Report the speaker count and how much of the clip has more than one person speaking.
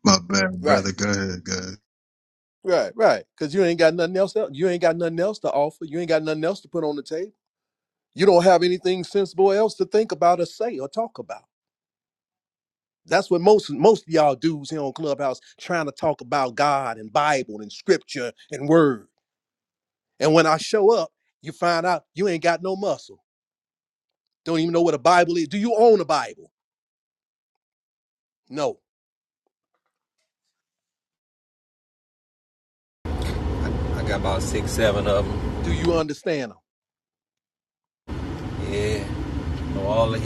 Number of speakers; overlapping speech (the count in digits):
3, under 1%